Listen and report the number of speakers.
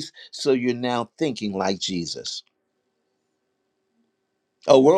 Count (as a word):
one